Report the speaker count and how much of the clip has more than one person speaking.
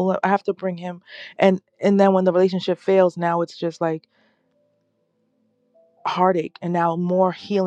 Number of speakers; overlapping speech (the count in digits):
1, no overlap